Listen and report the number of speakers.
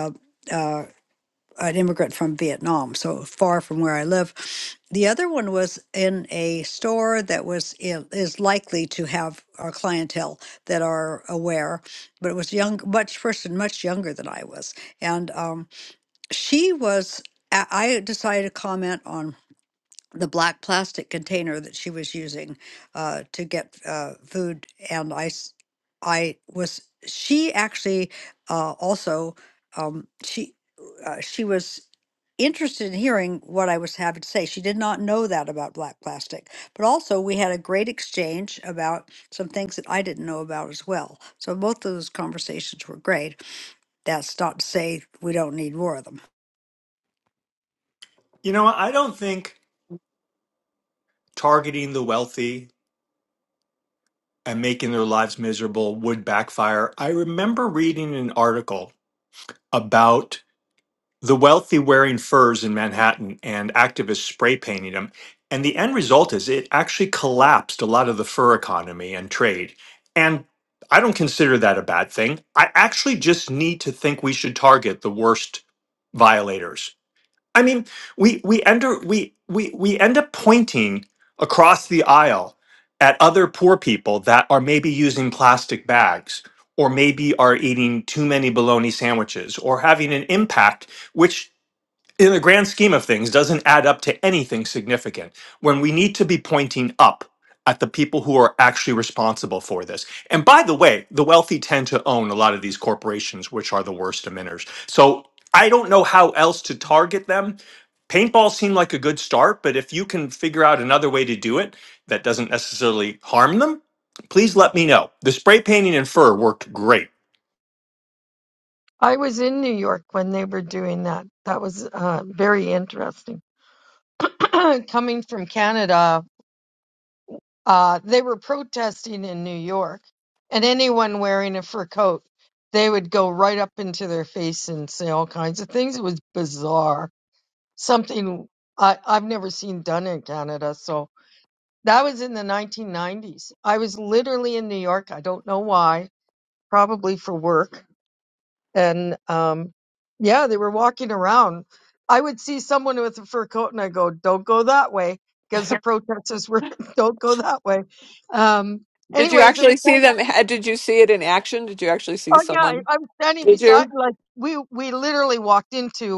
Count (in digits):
4